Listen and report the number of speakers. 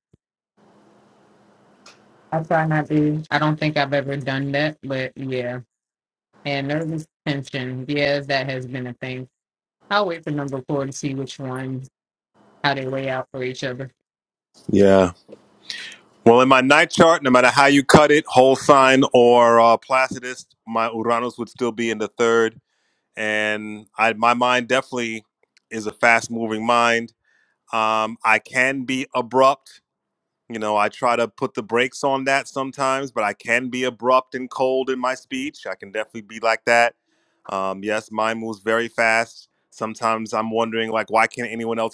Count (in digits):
2